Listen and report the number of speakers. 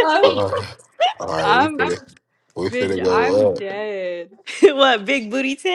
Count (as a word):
three